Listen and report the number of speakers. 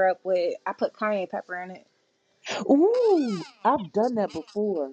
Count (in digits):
2